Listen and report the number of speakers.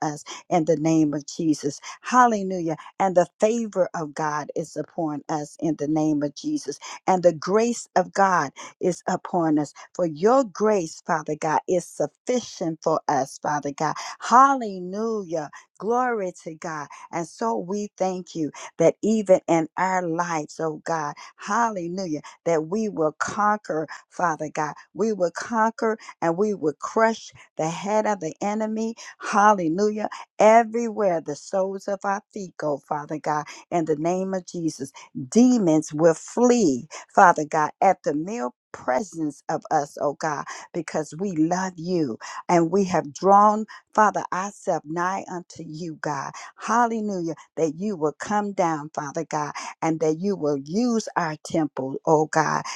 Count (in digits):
1